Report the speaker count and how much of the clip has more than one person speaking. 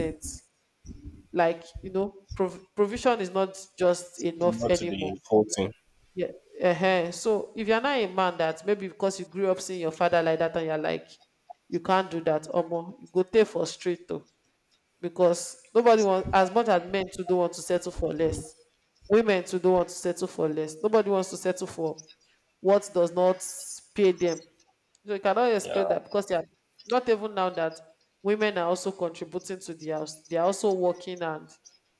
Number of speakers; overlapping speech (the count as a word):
two, about 3%